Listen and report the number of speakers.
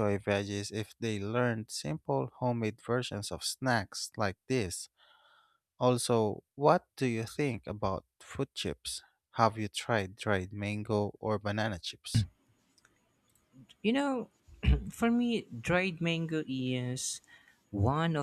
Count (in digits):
2